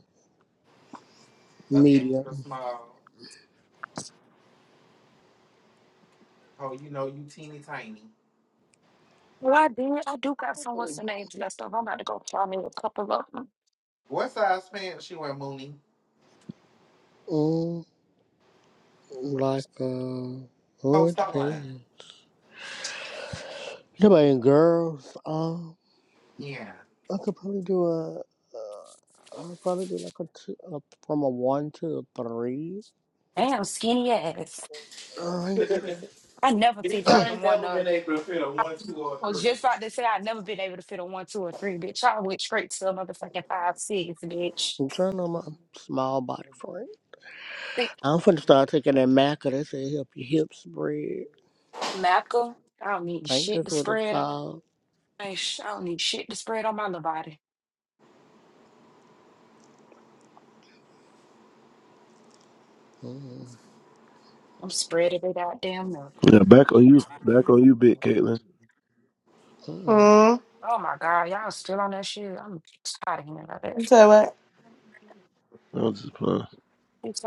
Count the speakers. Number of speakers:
five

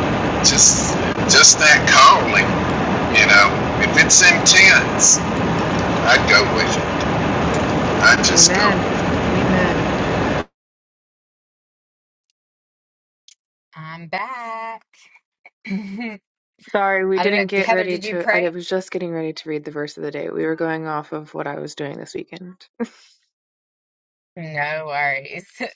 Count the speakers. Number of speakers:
three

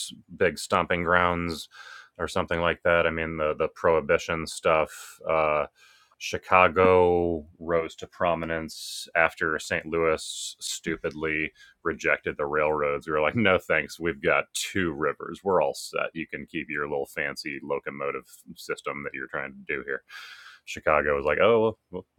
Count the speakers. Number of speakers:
one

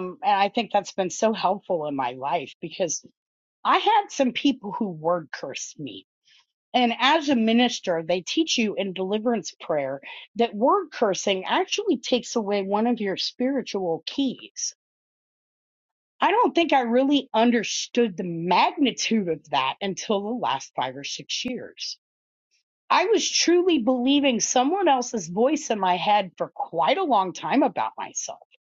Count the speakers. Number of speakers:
one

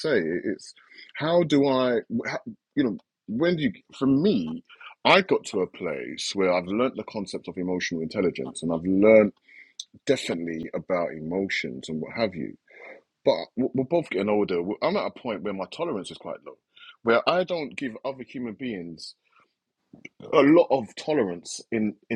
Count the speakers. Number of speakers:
one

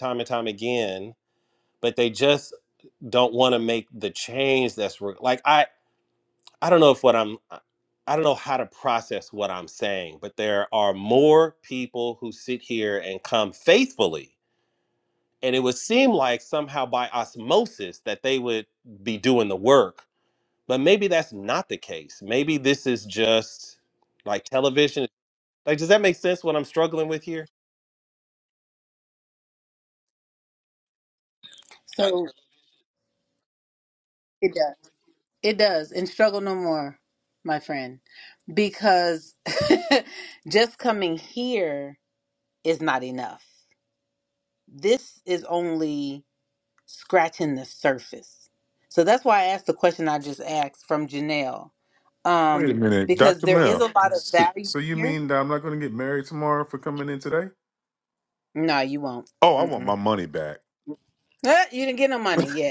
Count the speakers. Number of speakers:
three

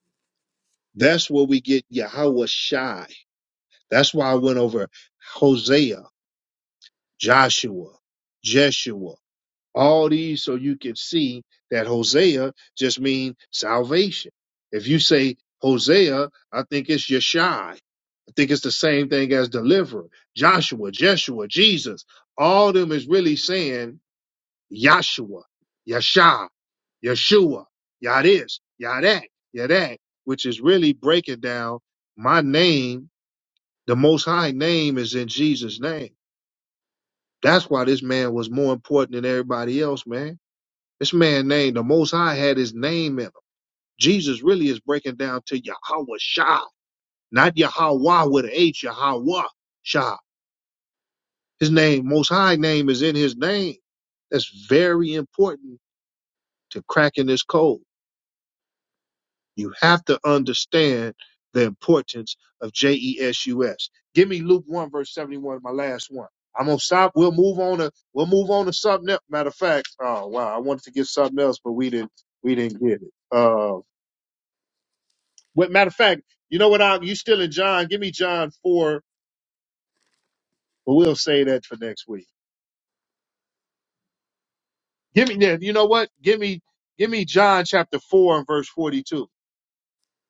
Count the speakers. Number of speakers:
one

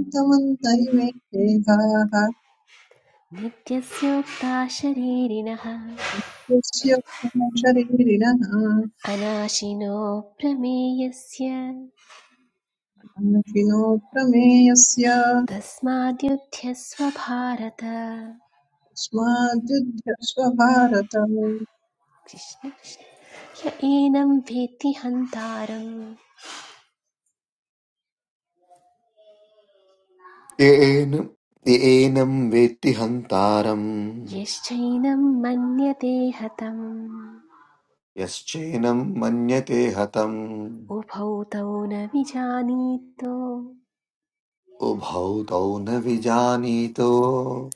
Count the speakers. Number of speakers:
three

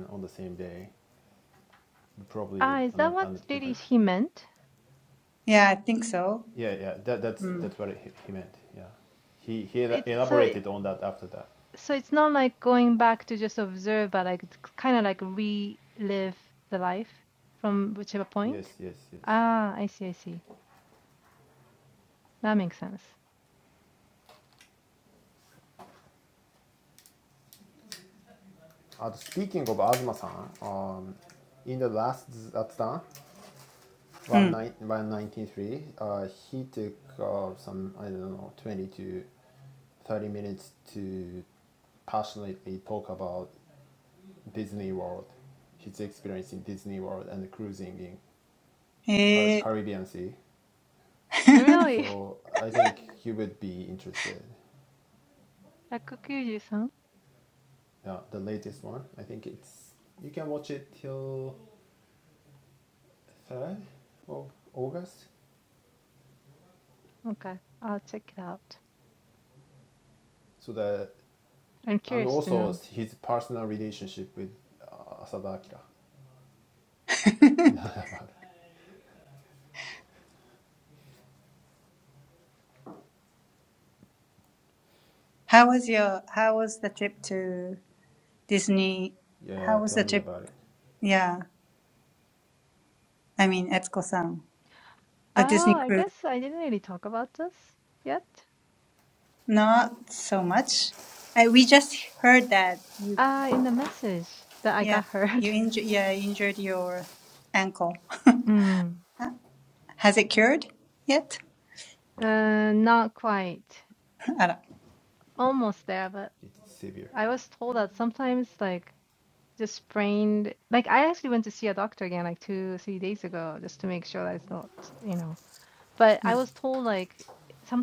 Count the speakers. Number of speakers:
three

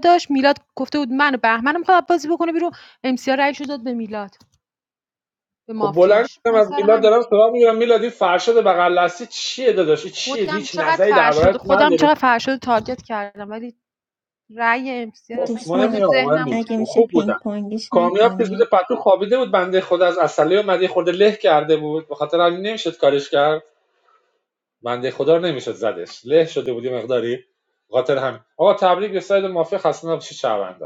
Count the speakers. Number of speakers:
three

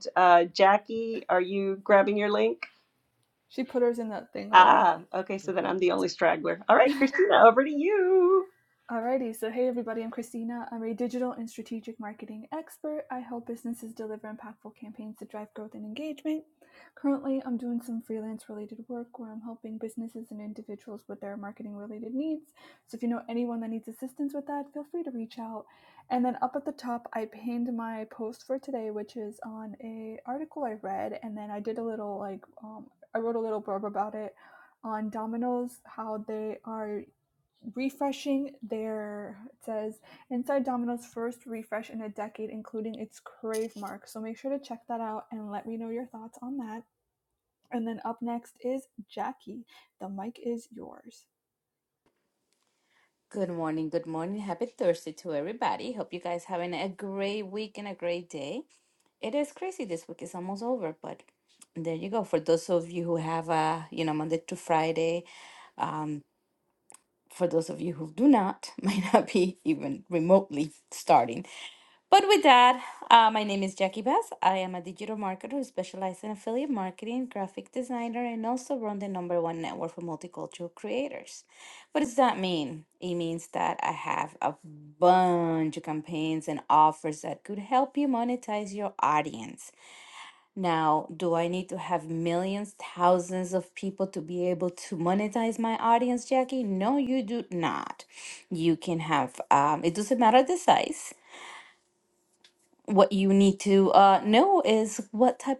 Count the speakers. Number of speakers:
three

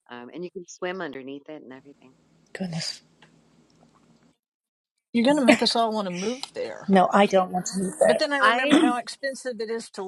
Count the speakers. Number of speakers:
three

